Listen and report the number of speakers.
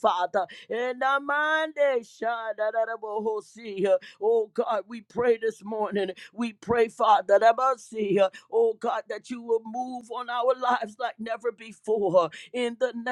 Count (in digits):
1